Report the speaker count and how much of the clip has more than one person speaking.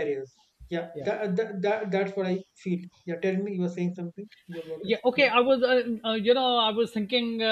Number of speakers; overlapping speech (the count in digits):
2, about 8%